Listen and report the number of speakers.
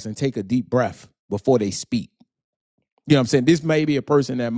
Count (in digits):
1